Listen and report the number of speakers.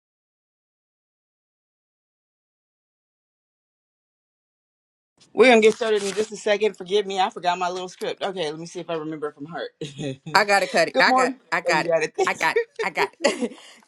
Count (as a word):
two